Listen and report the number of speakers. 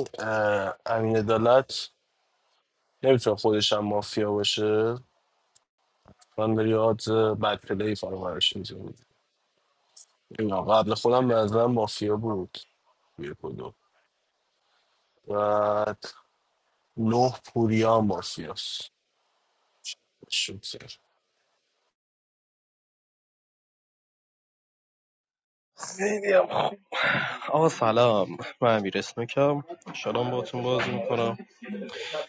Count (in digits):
2